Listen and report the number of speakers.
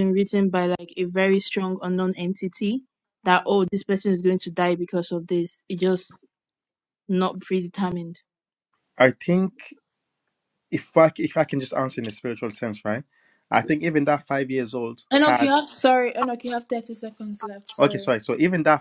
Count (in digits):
3